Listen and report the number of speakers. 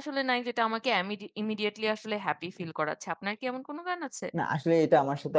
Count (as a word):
two